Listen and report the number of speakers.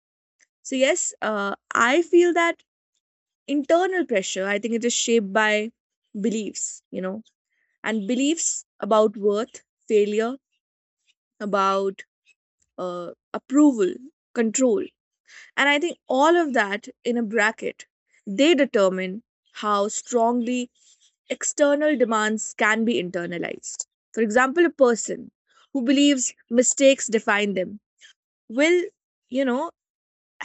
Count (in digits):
1